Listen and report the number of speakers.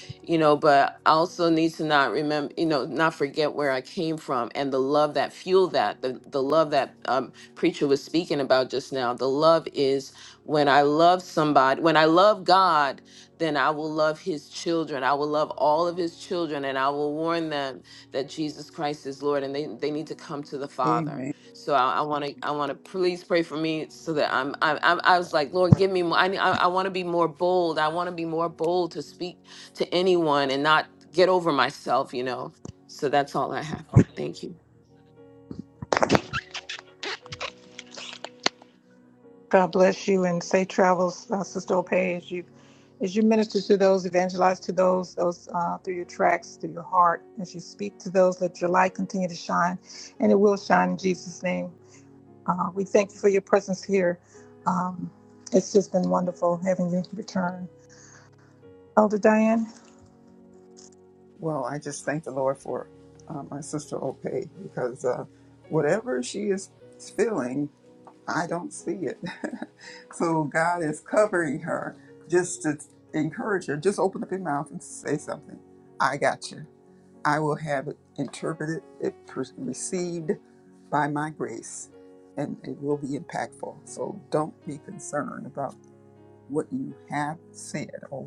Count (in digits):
3